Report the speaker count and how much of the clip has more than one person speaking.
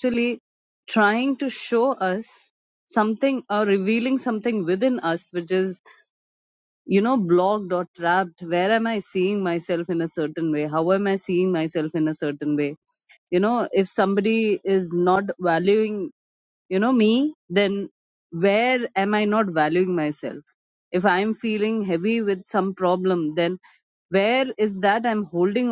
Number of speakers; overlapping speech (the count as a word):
one, no overlap